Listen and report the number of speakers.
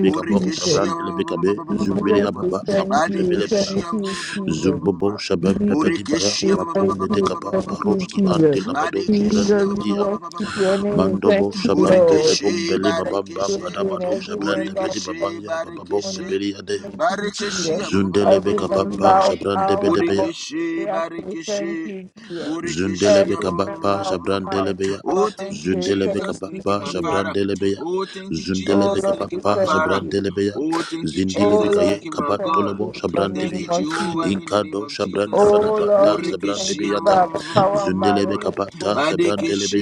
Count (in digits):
3